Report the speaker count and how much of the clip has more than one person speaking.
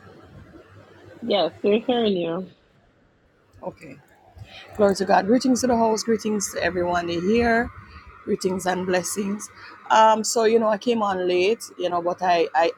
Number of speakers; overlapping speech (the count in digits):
2, no overlap